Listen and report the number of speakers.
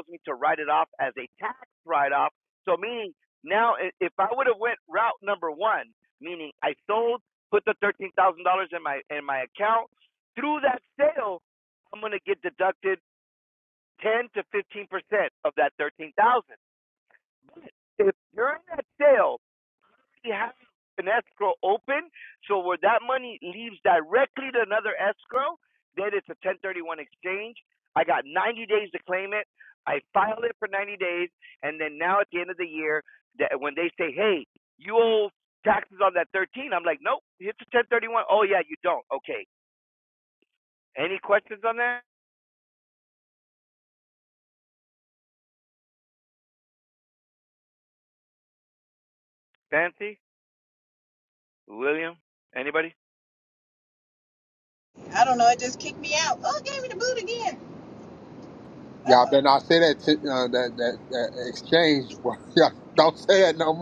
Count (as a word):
three